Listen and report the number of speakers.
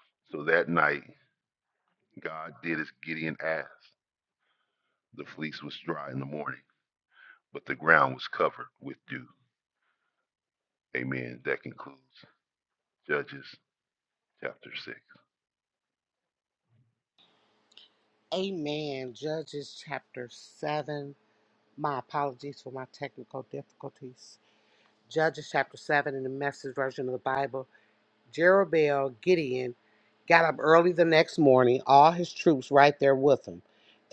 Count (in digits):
2